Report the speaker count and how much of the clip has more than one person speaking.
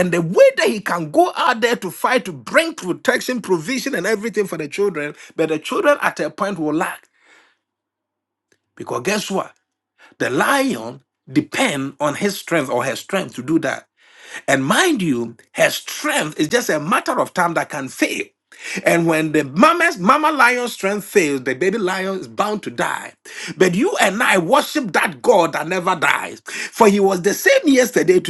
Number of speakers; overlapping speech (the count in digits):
1, no overlap